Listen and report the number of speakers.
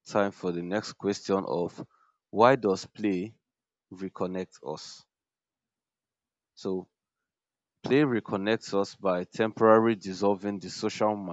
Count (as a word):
one